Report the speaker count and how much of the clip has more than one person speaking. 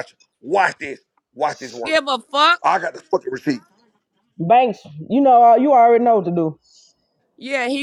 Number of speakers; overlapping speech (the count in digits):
3, about 1%